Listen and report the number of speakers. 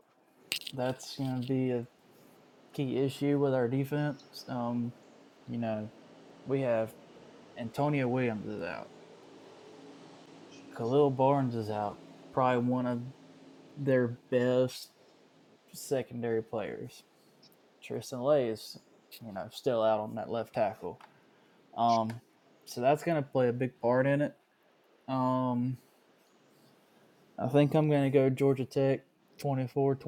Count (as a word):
one